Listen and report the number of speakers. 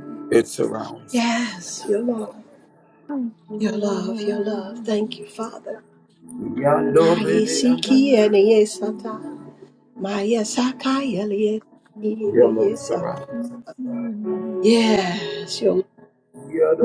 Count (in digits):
3